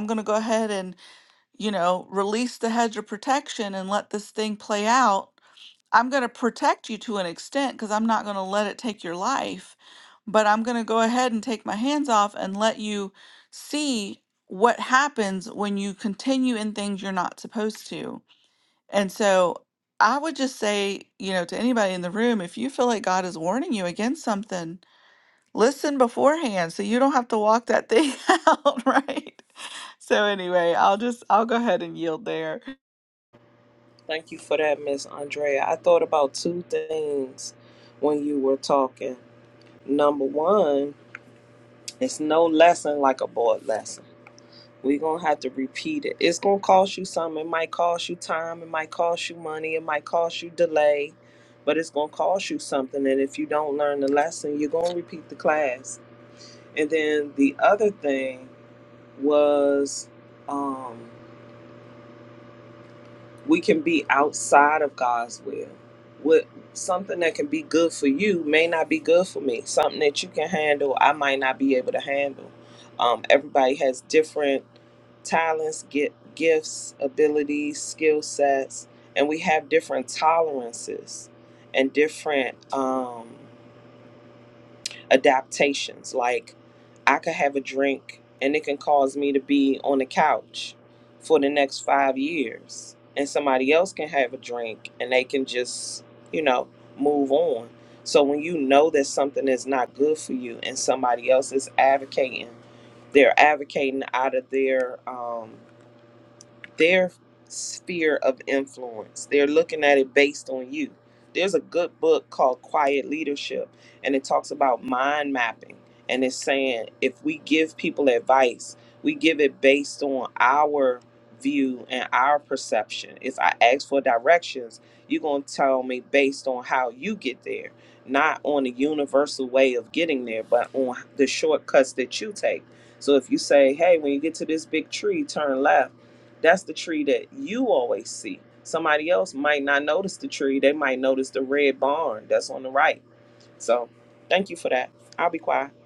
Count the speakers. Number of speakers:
two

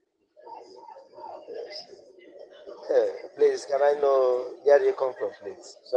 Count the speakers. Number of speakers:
one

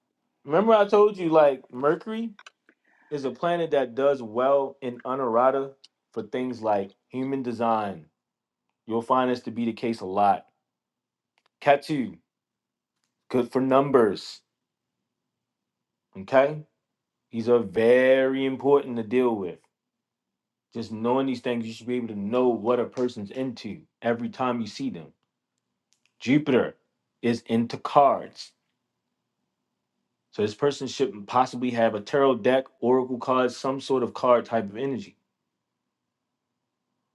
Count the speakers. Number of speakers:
one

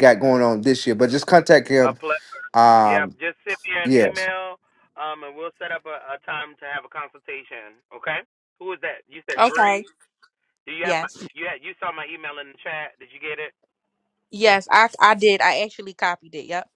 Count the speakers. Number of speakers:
three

